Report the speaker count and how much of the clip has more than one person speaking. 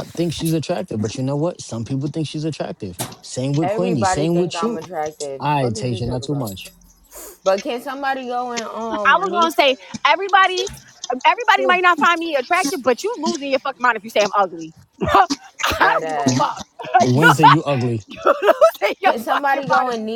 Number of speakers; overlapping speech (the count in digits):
3, about 24%